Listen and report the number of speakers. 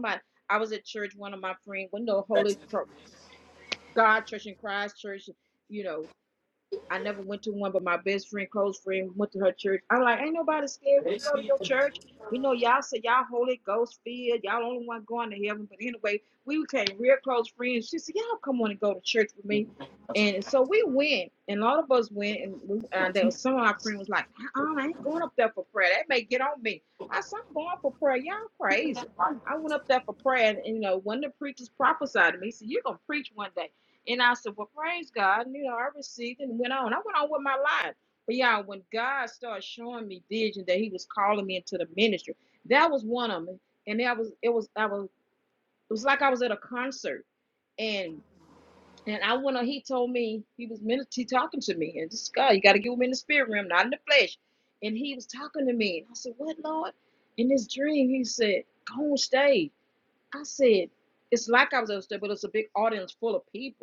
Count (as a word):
one